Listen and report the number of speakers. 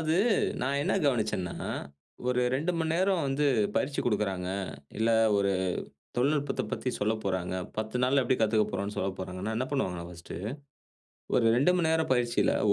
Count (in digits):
1